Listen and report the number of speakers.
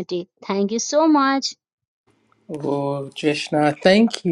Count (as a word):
two